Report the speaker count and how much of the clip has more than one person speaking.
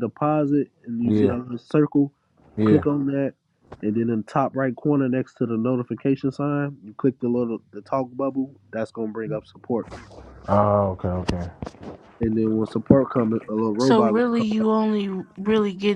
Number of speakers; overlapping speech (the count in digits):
3, about 9%